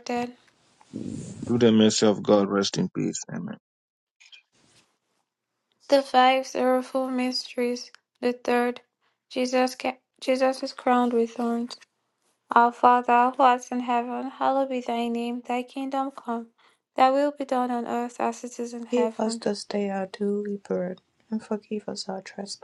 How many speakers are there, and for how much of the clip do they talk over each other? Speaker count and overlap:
3, about 2%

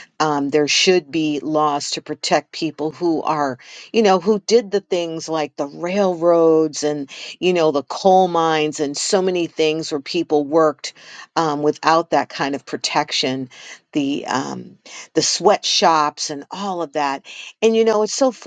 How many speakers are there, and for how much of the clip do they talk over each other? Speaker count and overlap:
1, no overlap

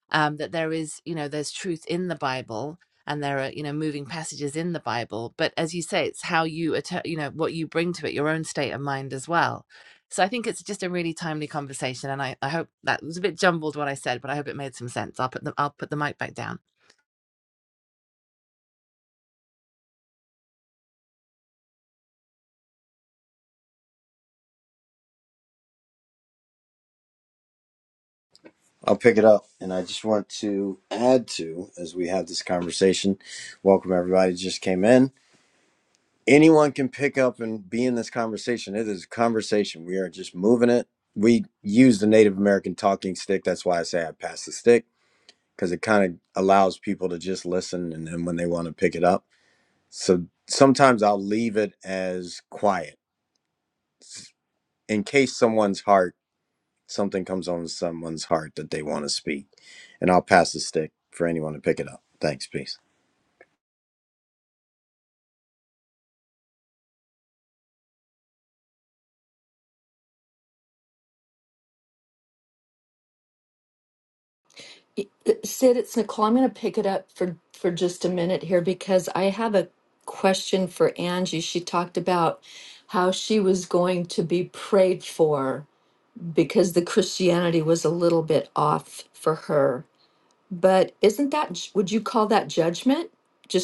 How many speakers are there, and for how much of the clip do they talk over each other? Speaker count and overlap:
3, no overlap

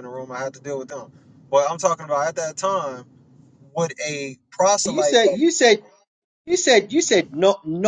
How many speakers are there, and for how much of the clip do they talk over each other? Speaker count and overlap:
2, about 4%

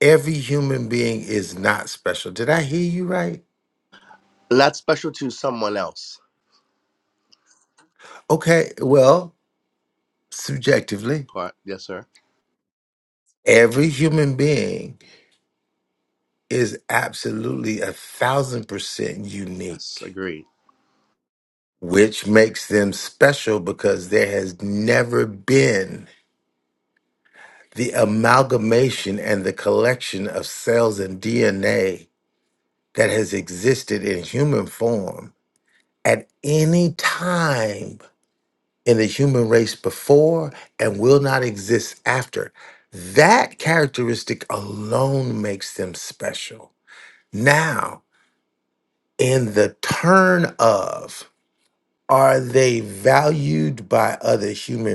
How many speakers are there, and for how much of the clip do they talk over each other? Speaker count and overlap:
2, about 1%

